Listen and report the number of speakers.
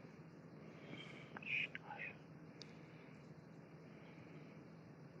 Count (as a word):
zero